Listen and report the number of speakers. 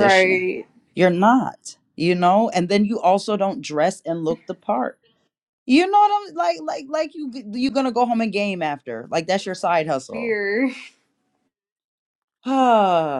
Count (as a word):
two